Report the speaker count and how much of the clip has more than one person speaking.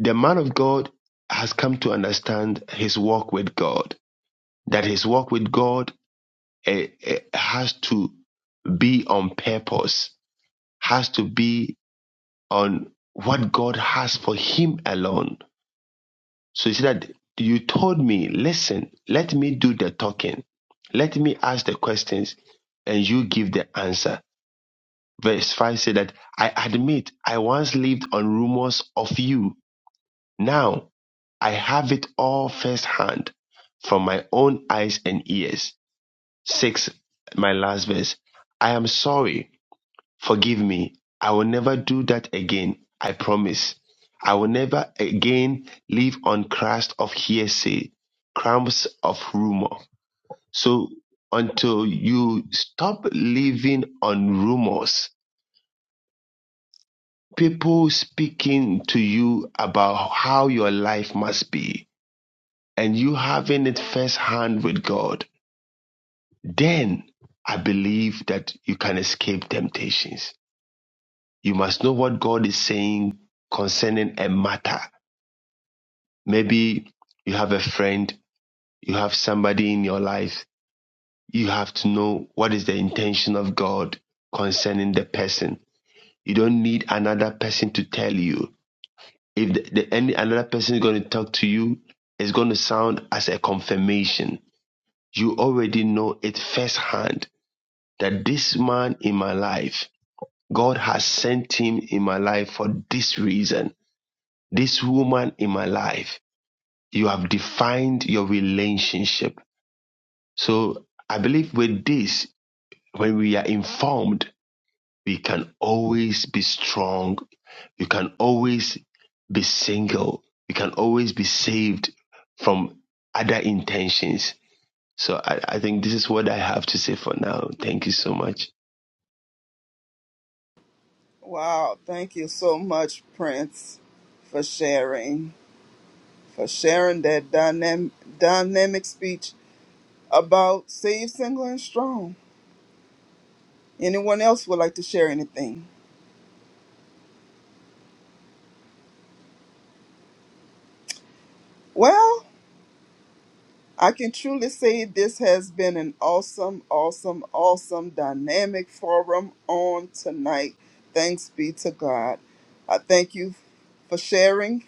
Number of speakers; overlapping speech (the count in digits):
2, no overlap